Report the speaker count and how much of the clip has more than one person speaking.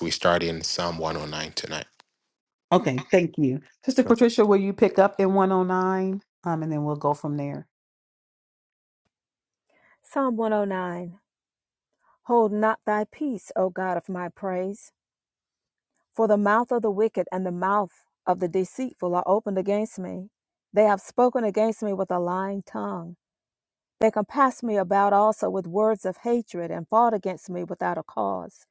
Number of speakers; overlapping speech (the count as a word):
three, no overlap